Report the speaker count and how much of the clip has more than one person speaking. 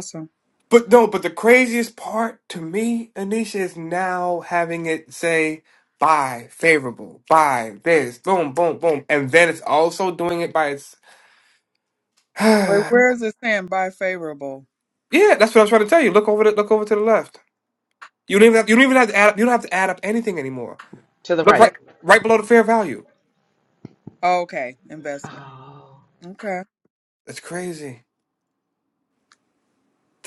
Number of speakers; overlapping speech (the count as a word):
three, about 2%